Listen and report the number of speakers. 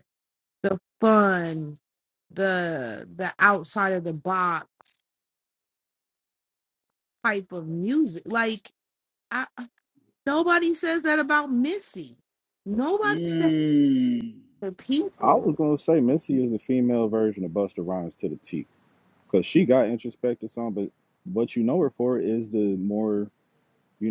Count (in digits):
3